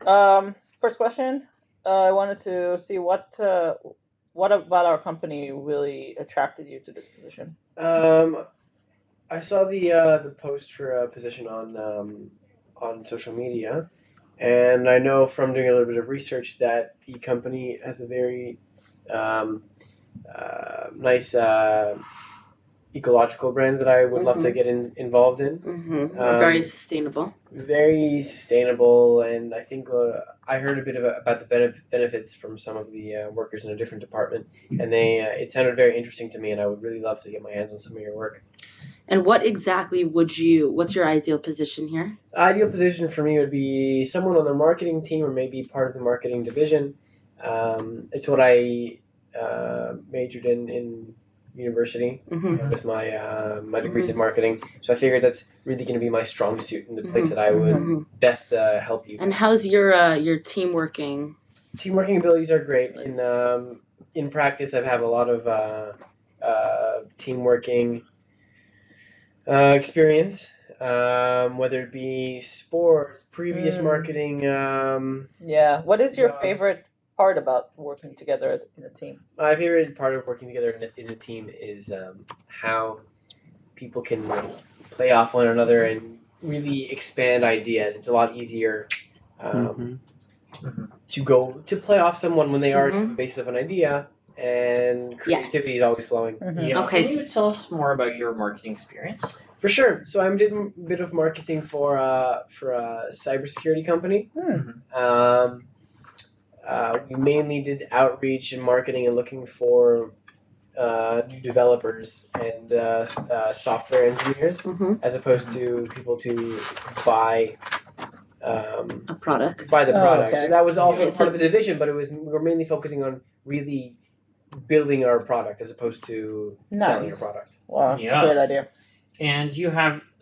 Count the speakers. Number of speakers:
4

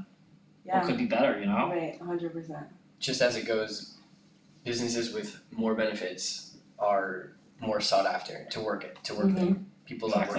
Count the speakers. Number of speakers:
3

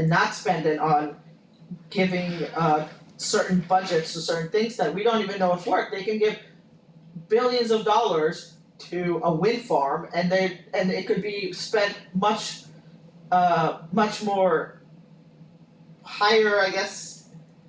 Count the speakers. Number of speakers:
1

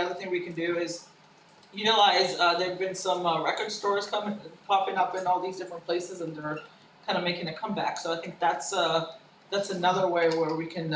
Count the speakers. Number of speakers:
1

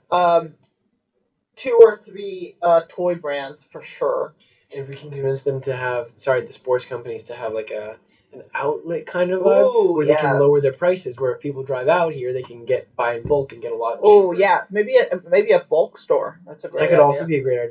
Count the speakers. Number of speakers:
2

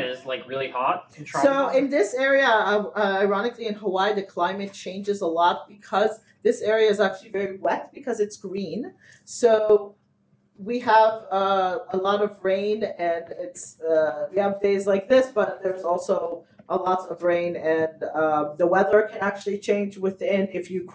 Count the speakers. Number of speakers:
2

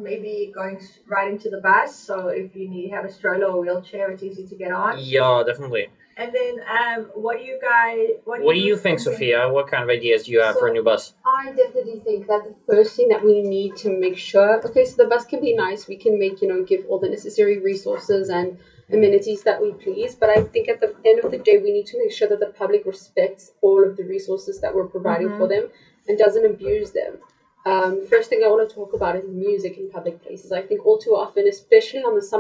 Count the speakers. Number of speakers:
3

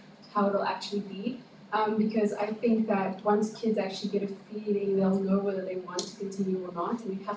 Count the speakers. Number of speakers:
1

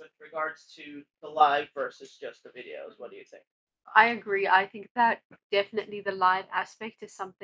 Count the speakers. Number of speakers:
2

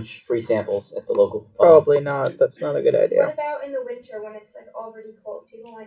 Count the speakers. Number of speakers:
3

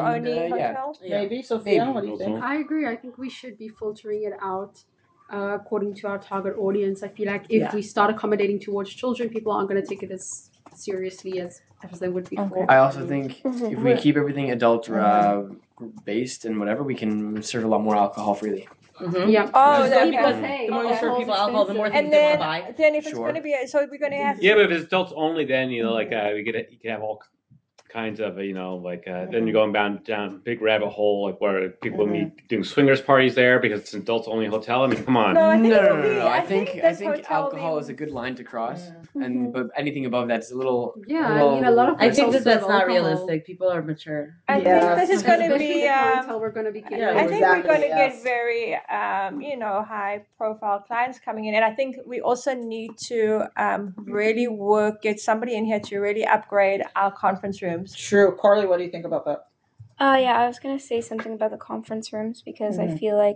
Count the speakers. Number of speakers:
7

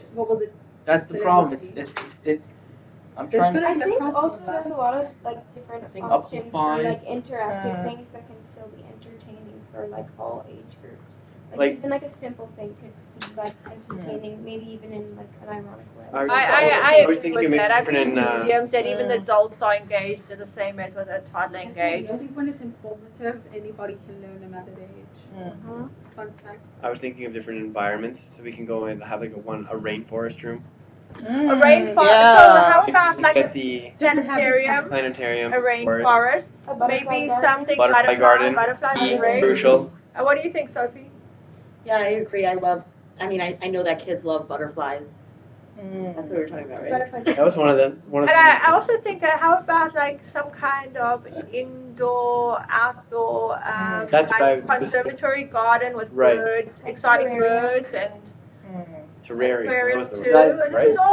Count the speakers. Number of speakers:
7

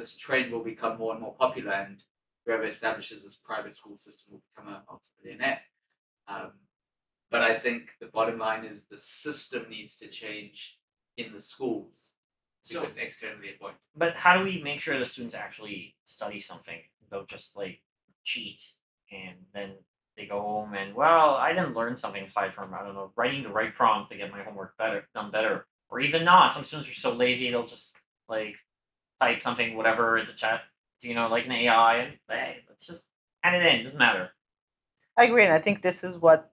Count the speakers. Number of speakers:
3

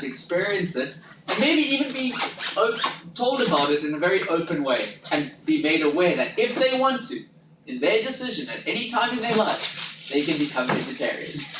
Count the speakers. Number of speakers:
1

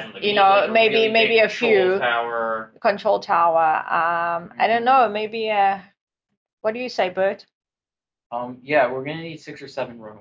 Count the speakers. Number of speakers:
3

